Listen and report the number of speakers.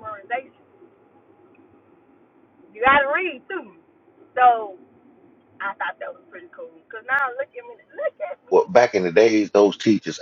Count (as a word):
two